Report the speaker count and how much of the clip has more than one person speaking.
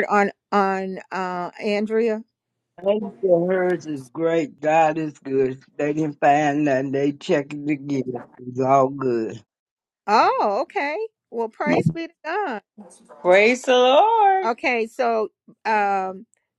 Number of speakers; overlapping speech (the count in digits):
3, under 1%